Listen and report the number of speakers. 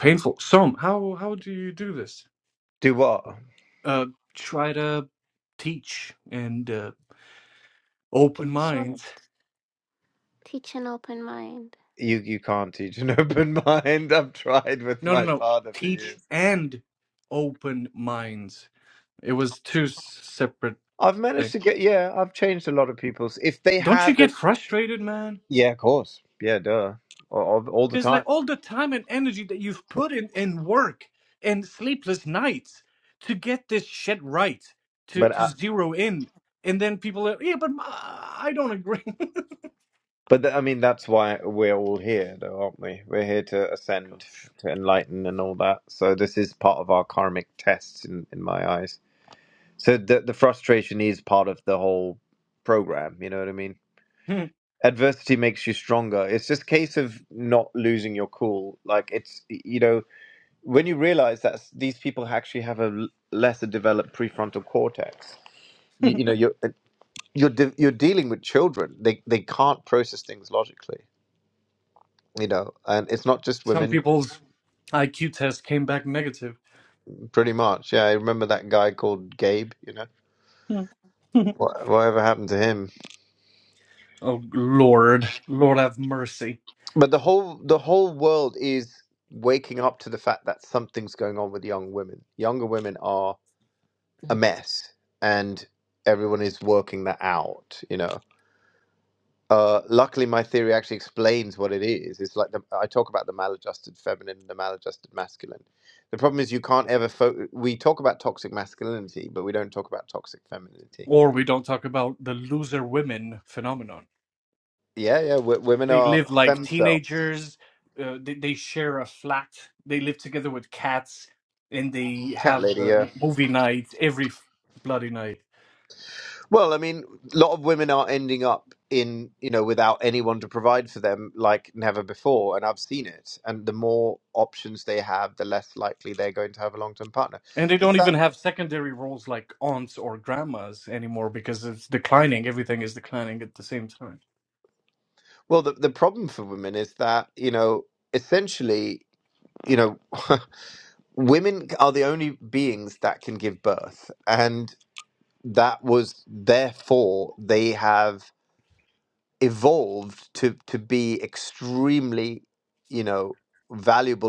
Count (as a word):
three